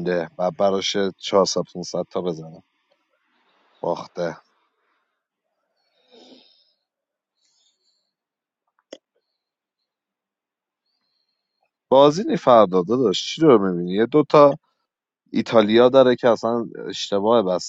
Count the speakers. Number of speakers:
1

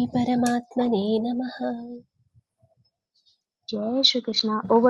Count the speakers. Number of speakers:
2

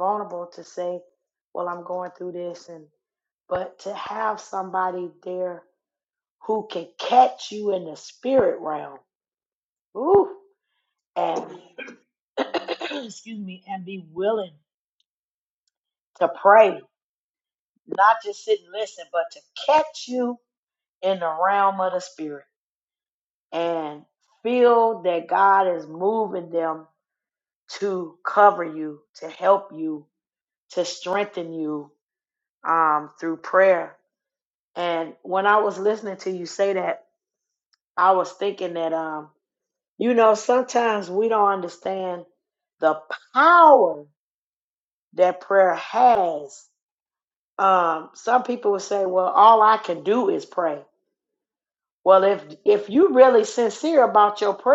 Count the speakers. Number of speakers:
1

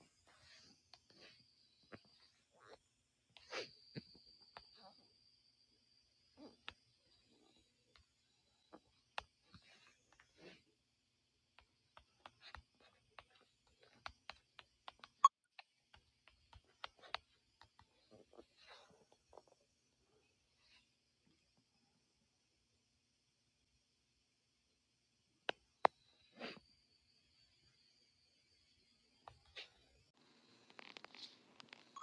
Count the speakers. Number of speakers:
0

